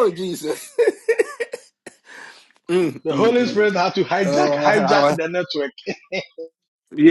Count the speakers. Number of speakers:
2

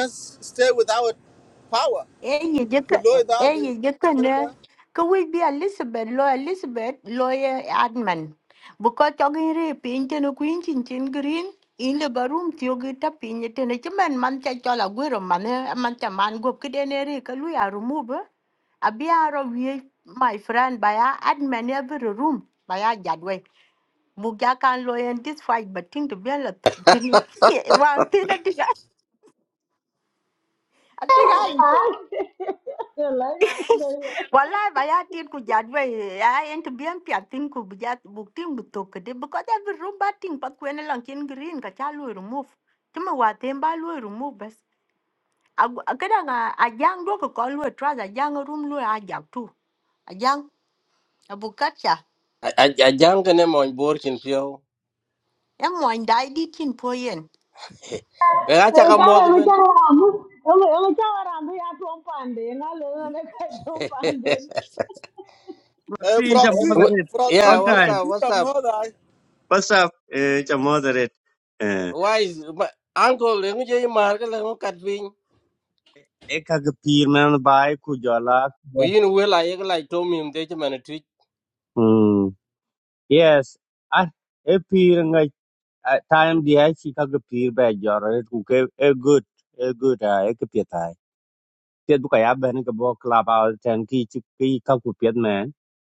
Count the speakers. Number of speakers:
5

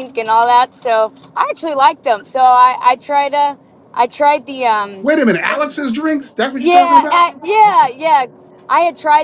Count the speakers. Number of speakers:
2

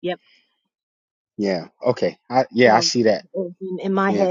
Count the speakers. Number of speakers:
2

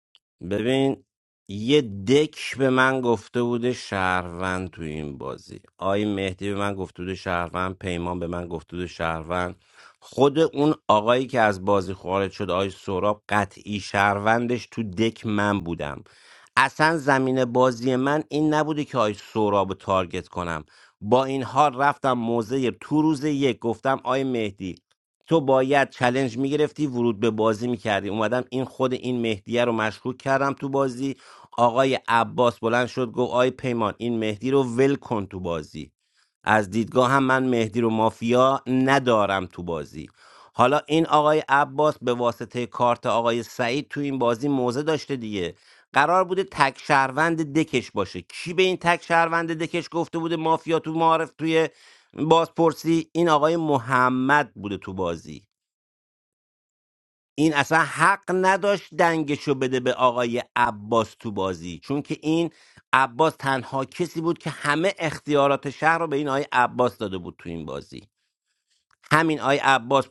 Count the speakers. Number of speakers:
1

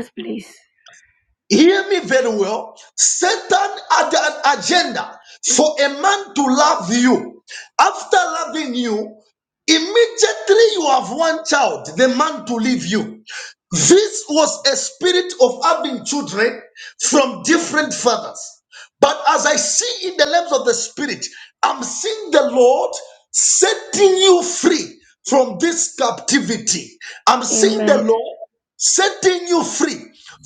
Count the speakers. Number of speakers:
2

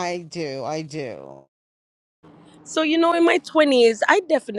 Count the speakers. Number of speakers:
2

